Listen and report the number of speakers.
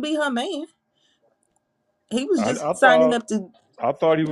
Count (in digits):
2